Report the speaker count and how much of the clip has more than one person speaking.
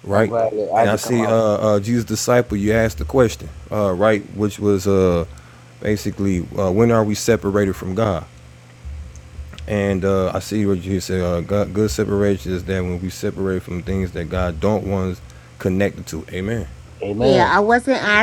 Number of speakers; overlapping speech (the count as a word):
three, about 6%